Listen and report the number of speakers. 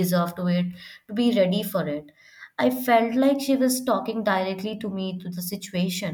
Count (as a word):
one